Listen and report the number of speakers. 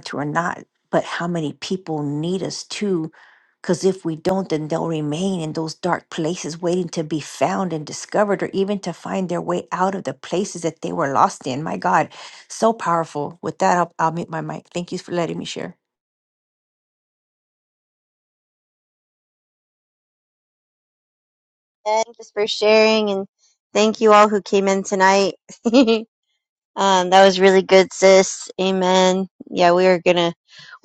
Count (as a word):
two